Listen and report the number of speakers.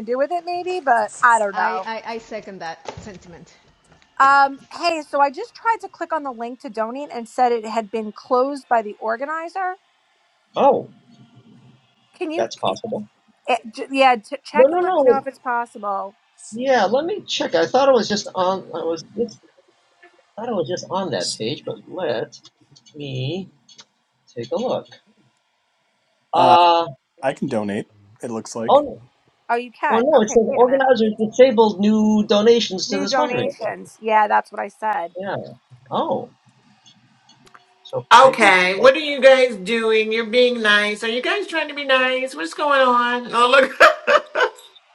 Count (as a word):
five